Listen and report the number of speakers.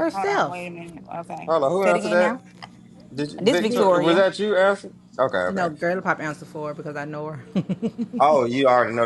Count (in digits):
3